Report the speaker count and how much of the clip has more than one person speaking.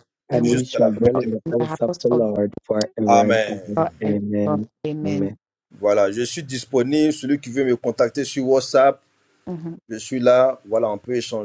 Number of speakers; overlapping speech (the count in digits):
3, about 33%